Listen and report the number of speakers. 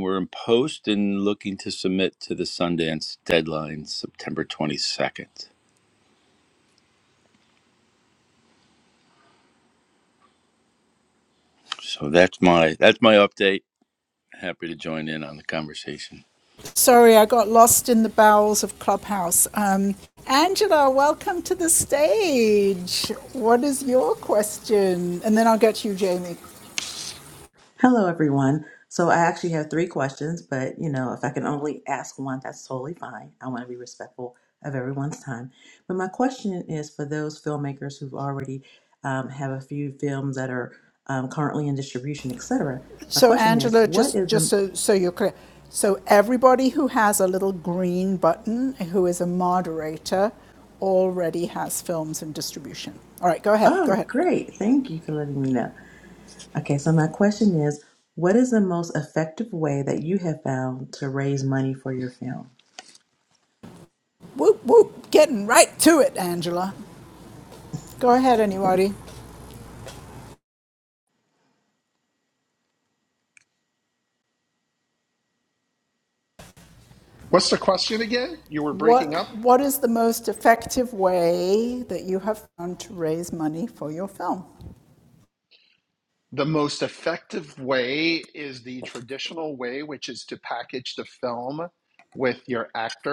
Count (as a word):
four